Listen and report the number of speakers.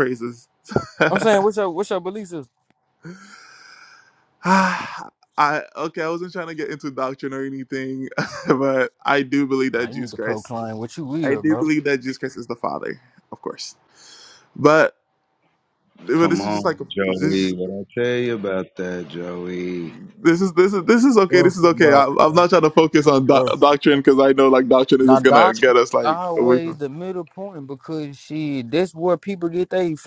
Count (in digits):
3